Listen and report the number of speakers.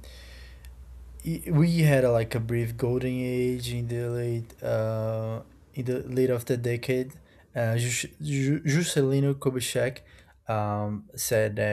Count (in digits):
1